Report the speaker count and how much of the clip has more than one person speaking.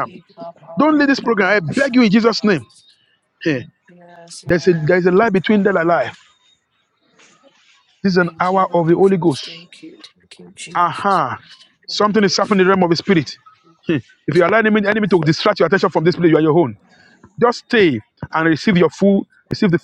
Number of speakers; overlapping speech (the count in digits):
2, about 21%